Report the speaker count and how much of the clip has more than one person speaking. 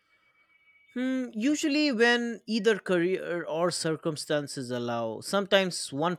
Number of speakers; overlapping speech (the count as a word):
one, no overlap